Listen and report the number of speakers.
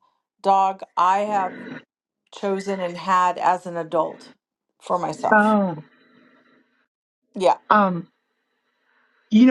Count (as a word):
two